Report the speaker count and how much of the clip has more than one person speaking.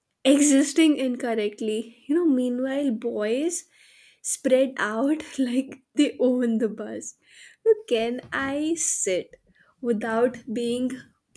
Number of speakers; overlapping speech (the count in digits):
1, no overlap